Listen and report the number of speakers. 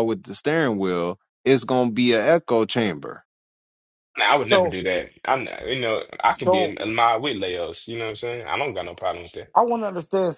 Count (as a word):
three